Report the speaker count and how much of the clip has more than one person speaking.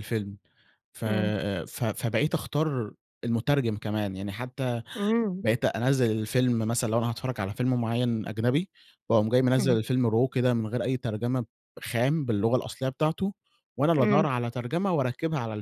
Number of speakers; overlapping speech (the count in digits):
2, about 5%